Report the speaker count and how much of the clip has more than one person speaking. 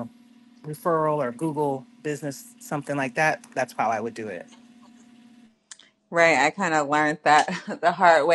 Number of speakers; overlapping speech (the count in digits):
2, no overlap